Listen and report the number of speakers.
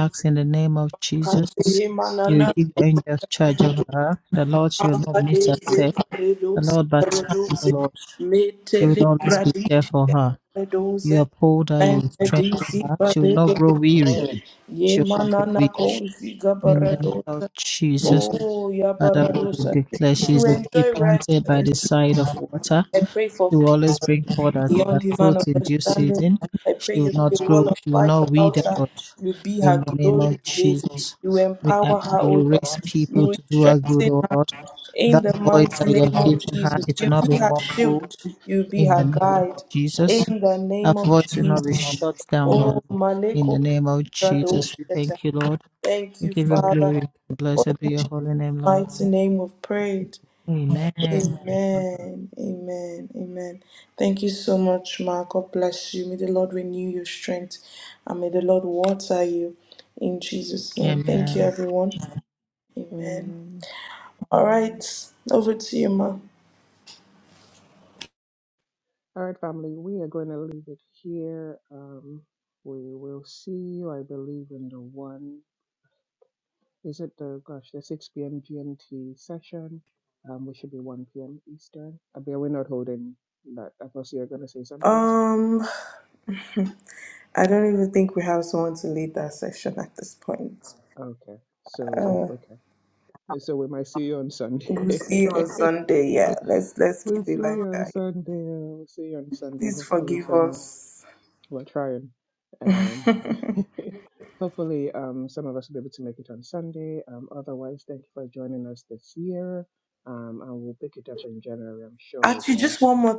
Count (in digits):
3